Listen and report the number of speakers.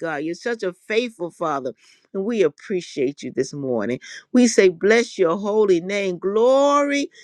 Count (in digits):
1